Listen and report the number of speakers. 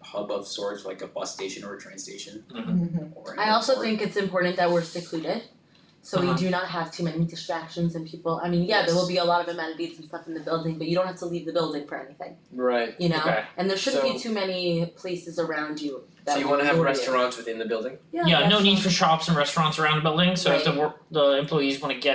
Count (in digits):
4